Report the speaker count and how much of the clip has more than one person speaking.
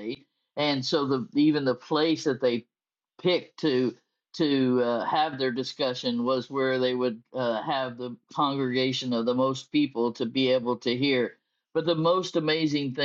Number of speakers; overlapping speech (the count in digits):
1, no overlap